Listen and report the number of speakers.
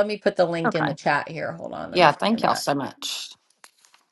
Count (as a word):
two